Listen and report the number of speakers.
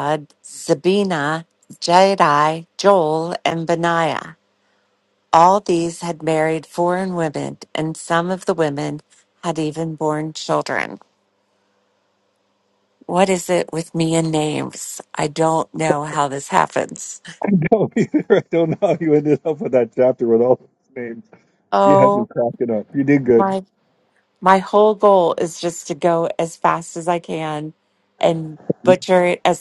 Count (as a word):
two